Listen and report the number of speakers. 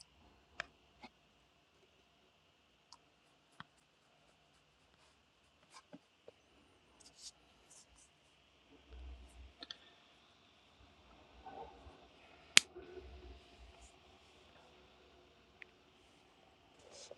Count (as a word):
zero